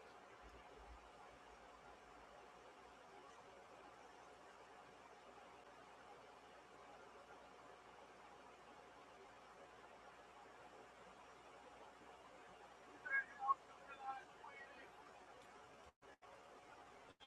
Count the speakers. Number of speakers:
0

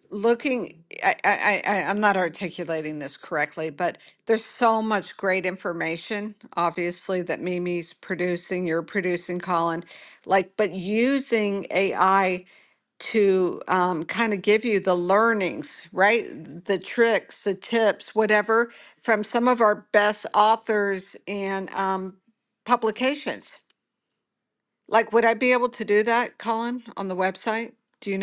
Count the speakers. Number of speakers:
1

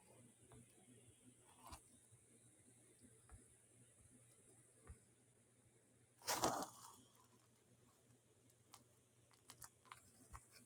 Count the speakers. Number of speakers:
0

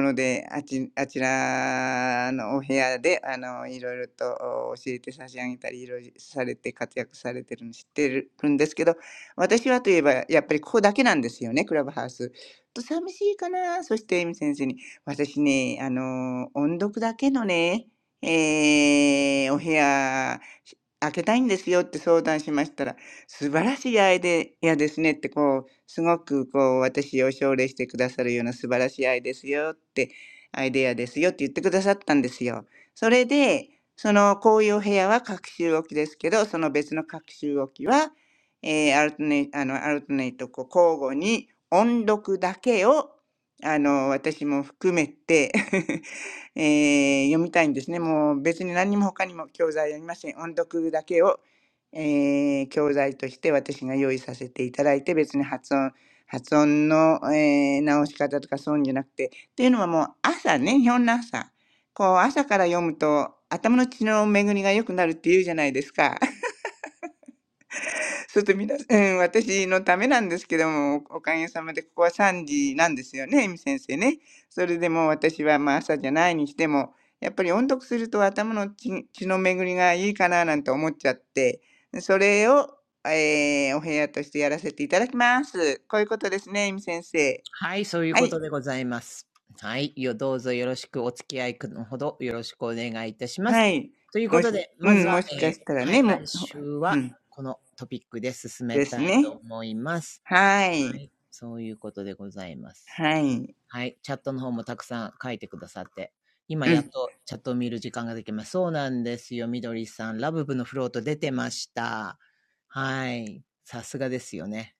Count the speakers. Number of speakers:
2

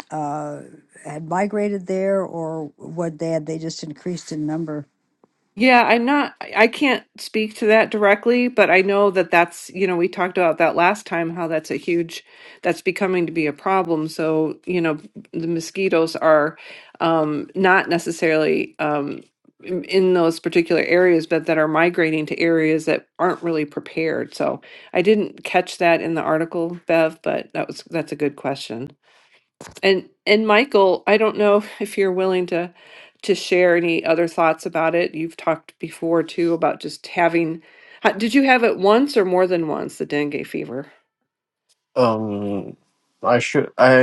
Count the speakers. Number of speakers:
3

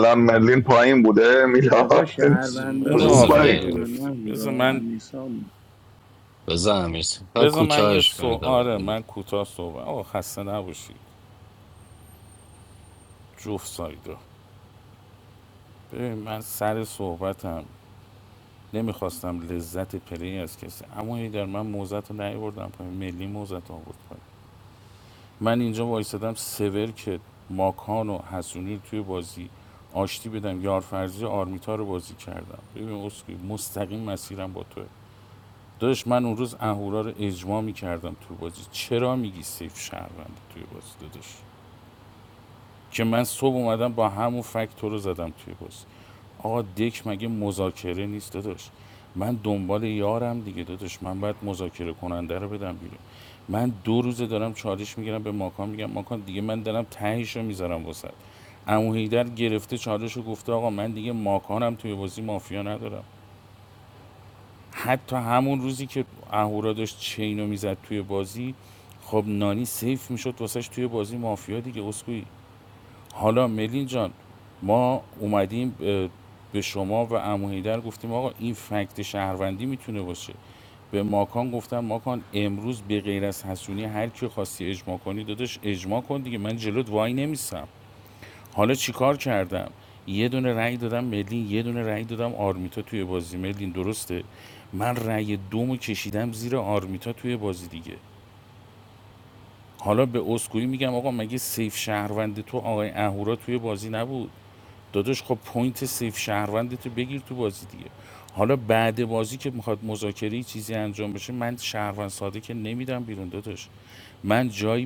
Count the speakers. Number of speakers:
4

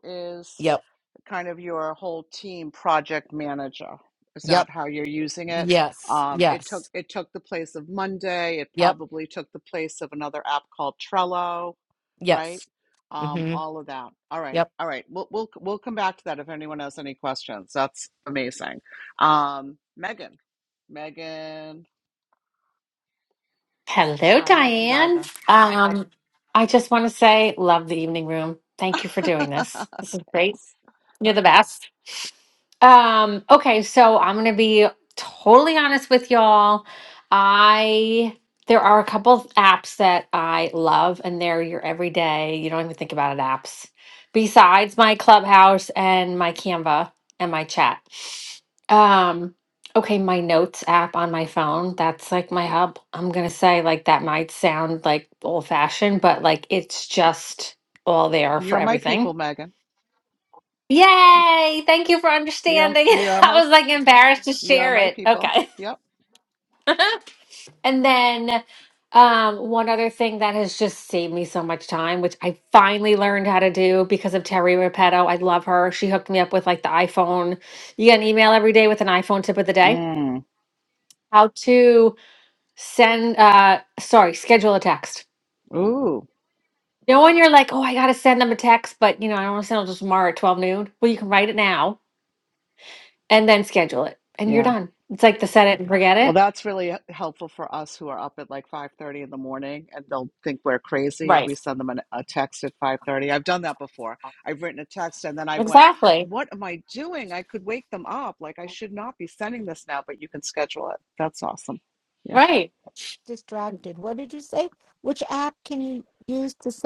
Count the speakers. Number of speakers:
4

